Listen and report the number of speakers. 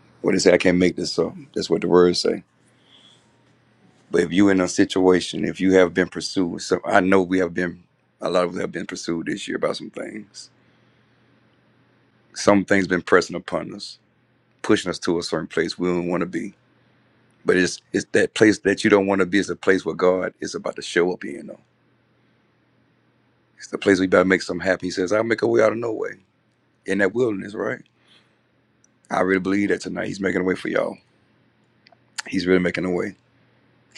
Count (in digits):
1